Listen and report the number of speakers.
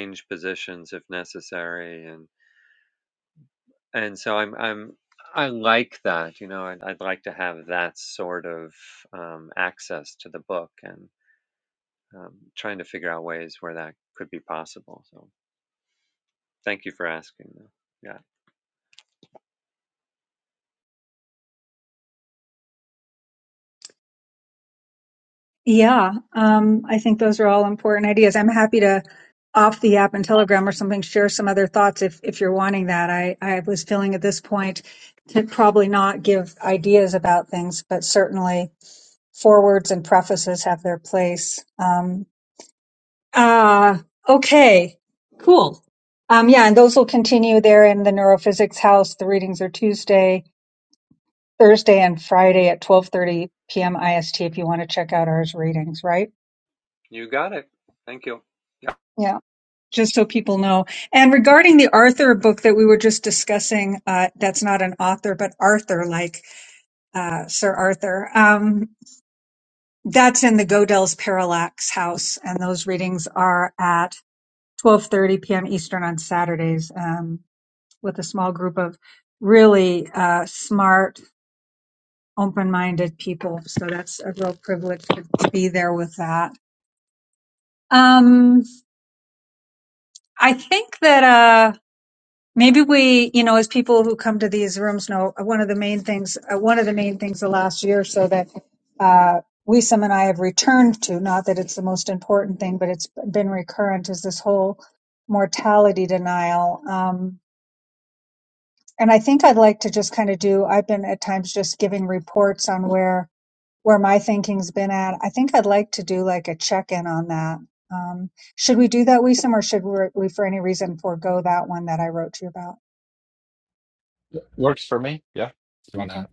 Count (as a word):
three